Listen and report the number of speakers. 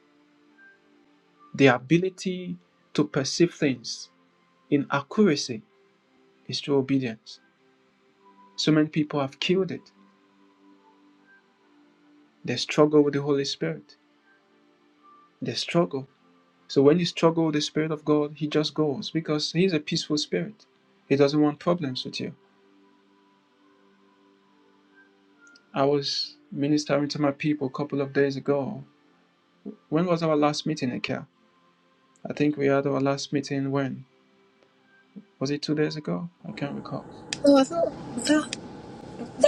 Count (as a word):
two